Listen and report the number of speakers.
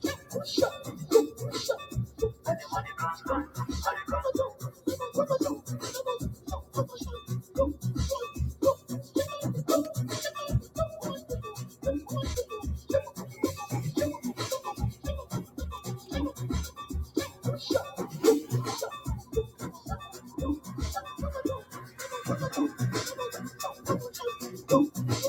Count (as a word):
zero